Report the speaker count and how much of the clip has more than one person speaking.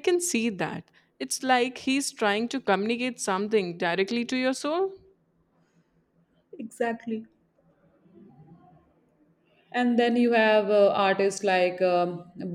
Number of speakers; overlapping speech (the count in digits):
2, no overlap